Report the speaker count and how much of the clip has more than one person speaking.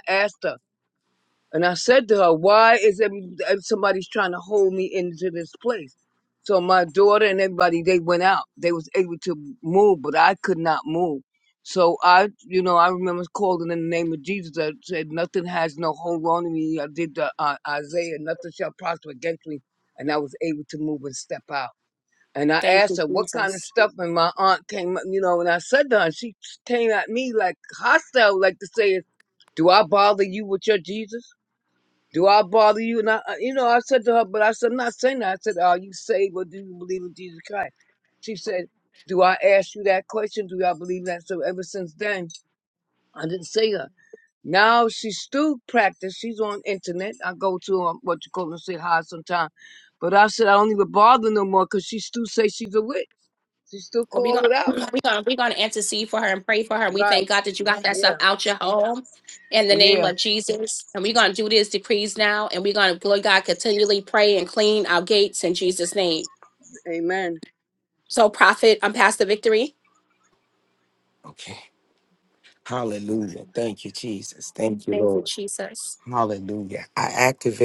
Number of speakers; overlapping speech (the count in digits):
3, about 3%